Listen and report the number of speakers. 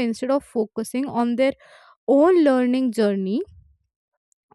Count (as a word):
one